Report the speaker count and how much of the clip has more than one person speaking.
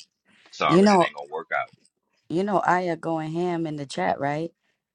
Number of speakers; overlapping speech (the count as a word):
two, about 8%